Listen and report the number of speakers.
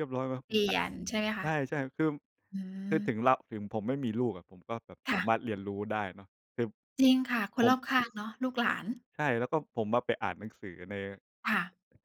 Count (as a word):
two